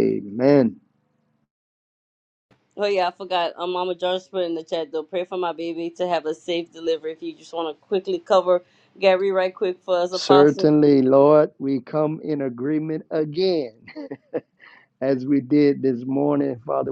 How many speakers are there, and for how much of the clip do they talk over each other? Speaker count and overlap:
2, about 3%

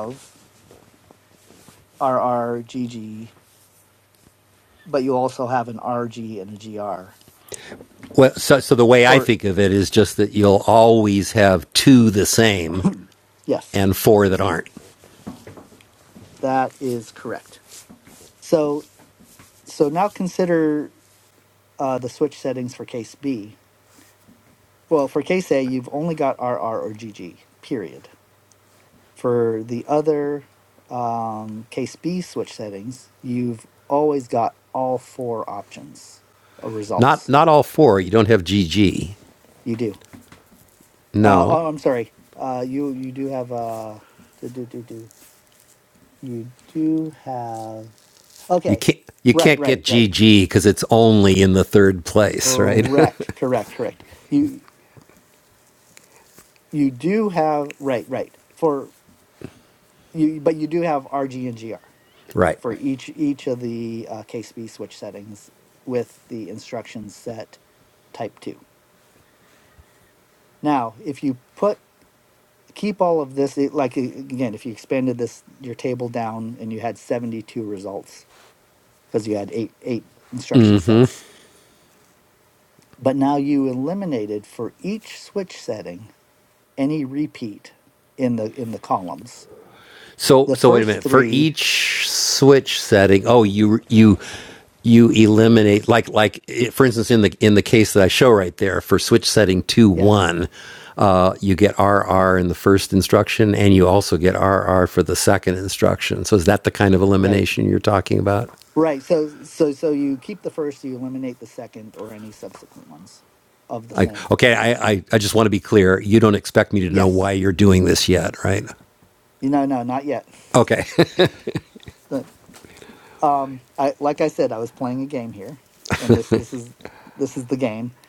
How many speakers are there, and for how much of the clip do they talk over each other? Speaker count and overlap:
2, about 3%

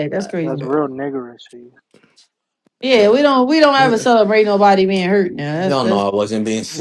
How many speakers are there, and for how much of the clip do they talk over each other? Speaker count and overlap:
3, about 20%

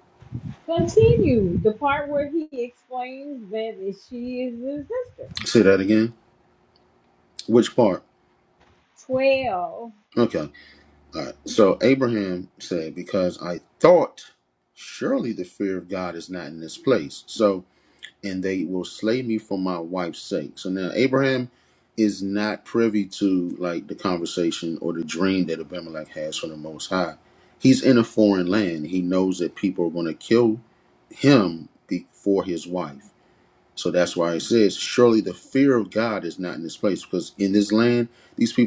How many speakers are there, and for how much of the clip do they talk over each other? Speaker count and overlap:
2, no overlap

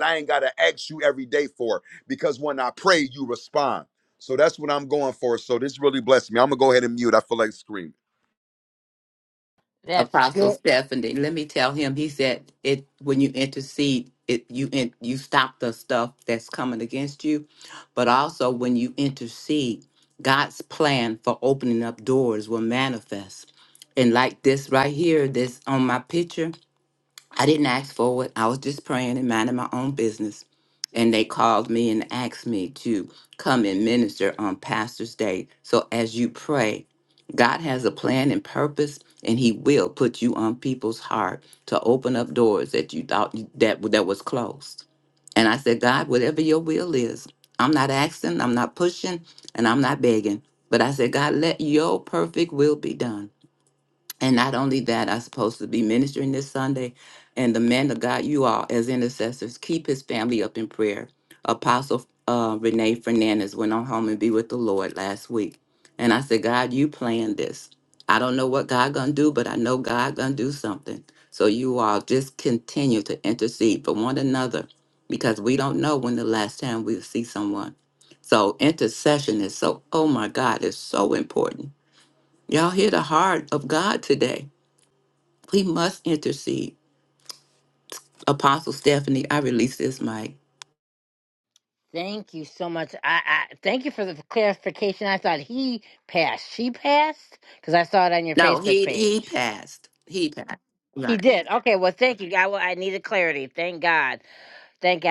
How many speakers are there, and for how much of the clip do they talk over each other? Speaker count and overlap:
3, about 1%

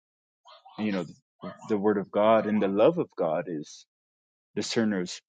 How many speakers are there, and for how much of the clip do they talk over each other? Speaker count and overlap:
1, no overlap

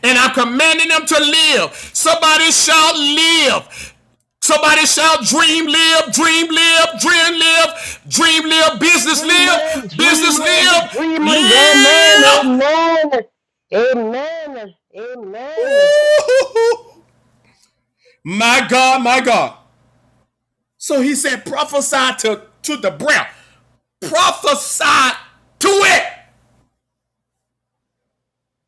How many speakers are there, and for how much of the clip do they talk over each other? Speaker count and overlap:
2, about 12%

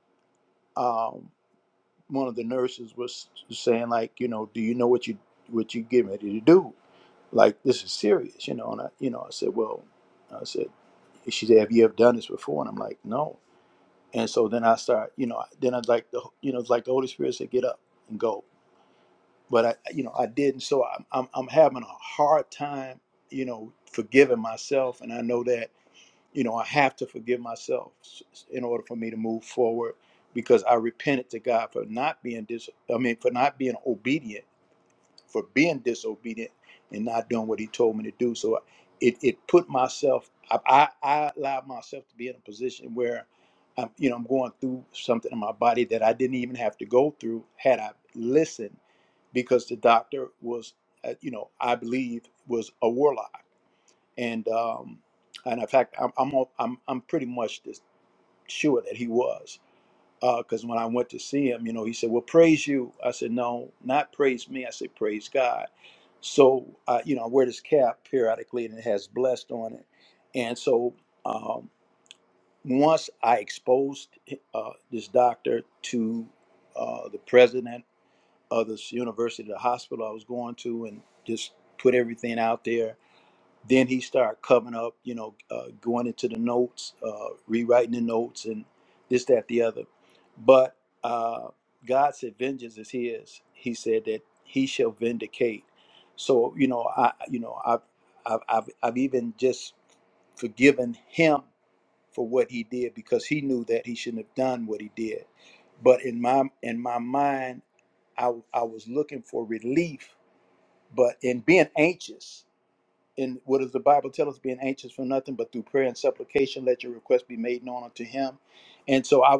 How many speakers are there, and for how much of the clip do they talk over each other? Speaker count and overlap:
1, no overlap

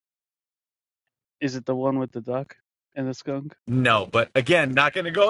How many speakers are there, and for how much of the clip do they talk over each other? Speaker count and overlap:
2, no overlap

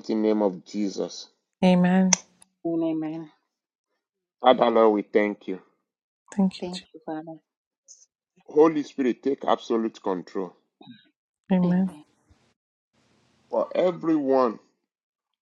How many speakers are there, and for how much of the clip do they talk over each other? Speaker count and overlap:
3, about 3%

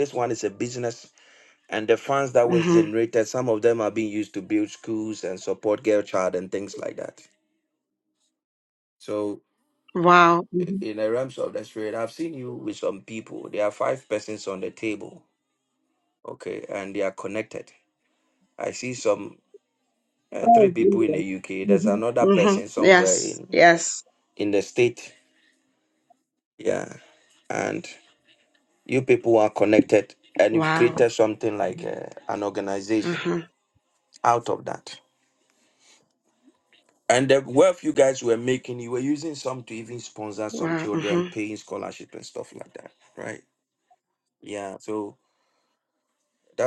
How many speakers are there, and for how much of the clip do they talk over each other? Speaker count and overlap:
2, about 8%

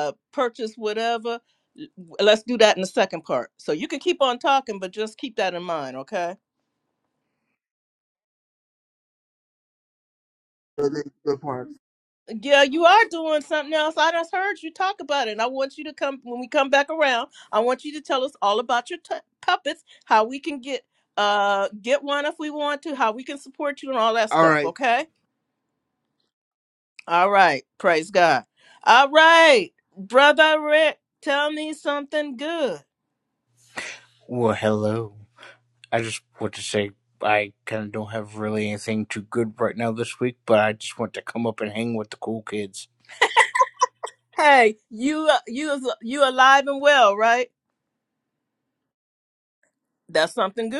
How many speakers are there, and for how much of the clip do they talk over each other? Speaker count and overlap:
3, about 1%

